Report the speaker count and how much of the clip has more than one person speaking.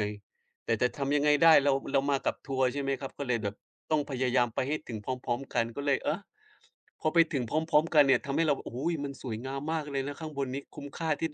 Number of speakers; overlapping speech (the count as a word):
one, no overlap